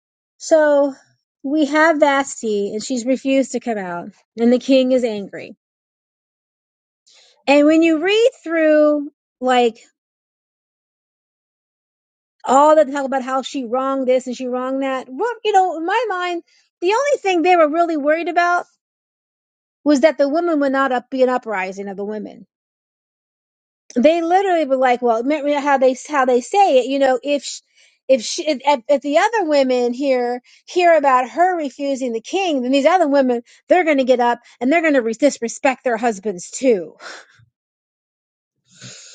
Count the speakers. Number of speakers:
1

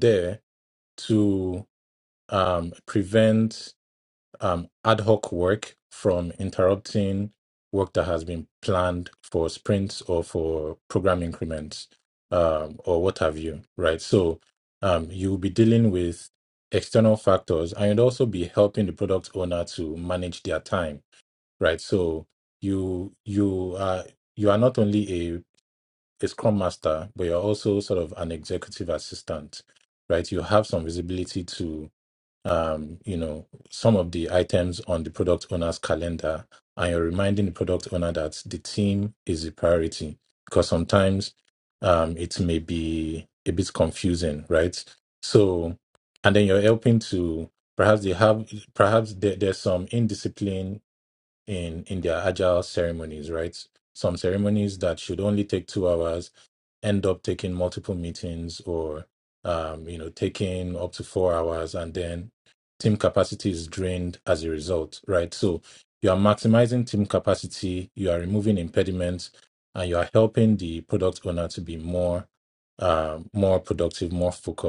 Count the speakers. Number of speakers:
1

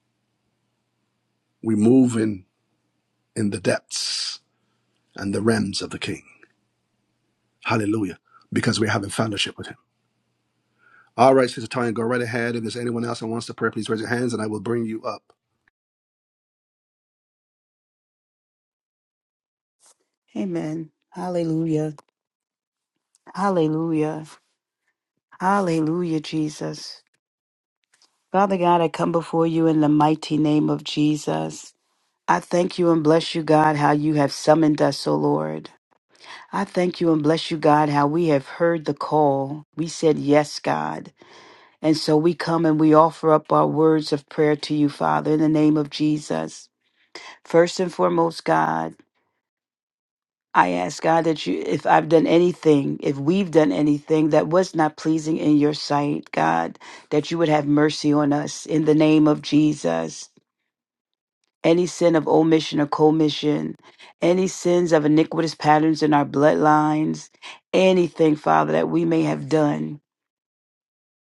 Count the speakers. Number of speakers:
2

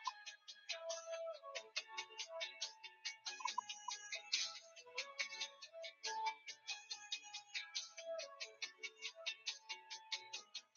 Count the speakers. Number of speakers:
0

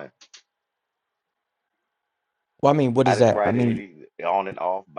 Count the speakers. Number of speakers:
2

